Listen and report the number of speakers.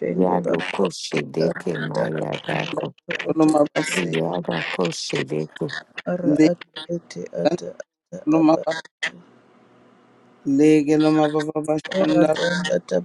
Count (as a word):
three